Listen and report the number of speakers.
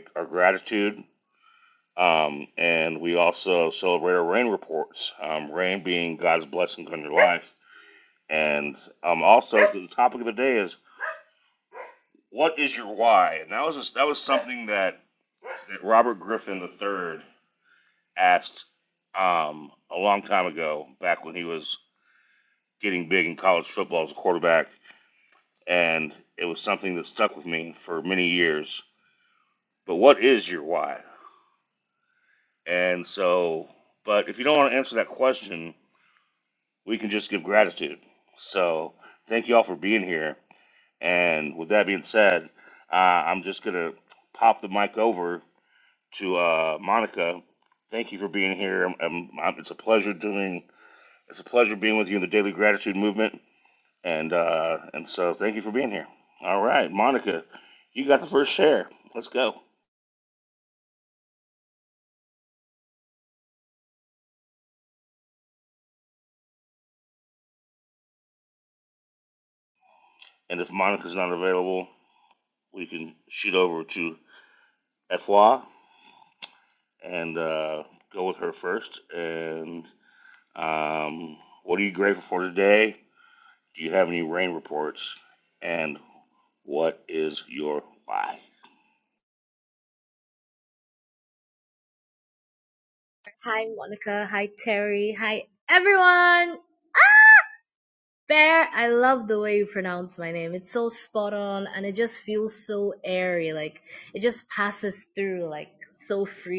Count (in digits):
2